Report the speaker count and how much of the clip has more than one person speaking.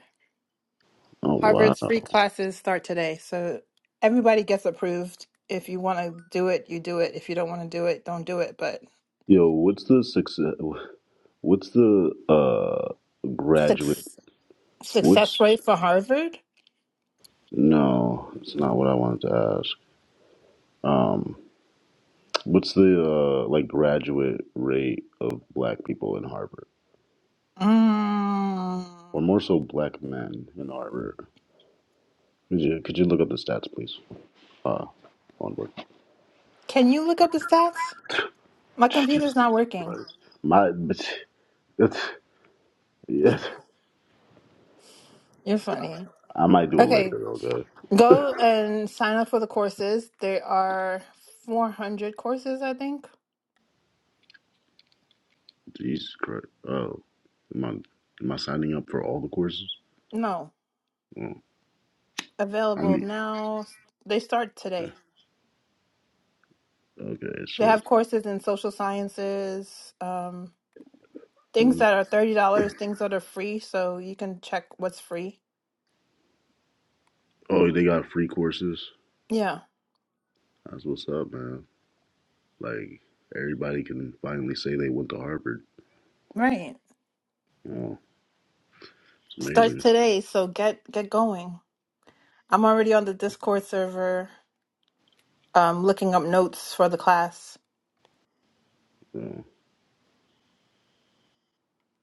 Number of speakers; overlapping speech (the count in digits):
2, about 3%